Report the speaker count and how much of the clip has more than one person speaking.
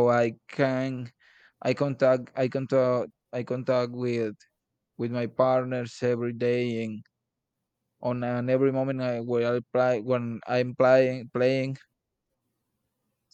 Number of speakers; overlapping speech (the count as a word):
one, no overlap